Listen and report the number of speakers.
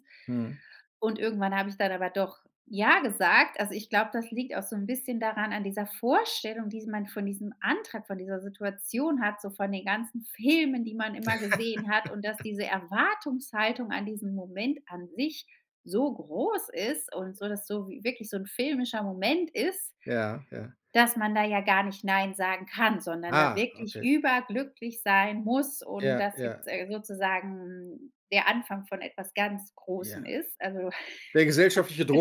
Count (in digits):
2